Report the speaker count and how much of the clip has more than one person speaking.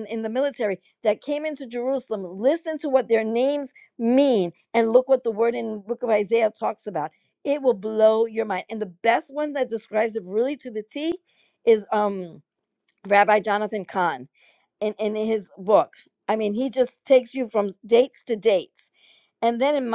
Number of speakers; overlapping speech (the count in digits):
1, no overlap